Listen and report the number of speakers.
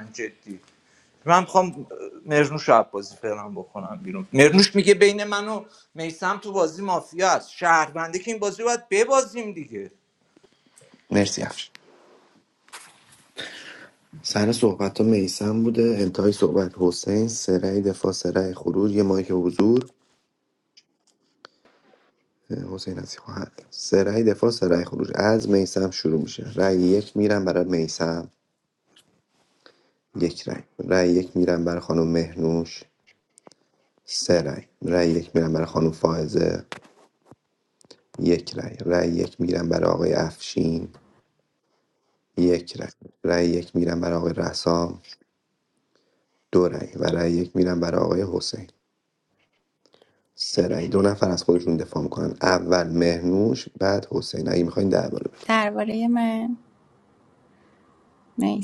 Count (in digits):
3